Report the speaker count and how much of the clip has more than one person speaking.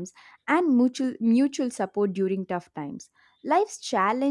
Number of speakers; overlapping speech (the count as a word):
one, no overlap